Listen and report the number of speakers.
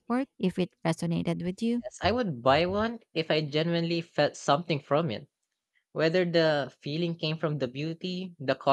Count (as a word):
two